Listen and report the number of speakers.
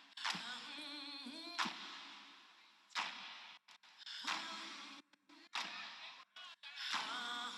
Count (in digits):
0